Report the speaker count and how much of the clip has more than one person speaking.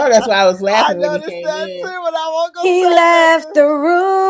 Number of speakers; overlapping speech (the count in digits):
3, about 51%